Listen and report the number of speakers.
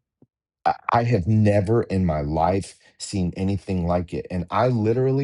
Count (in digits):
1